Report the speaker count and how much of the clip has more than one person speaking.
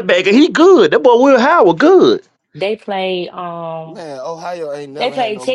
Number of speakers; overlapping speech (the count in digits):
3, about 12%